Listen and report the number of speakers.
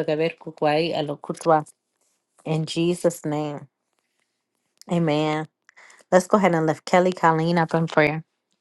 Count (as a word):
one